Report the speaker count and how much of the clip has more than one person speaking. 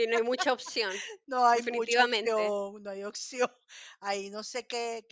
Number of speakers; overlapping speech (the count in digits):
2, about 19%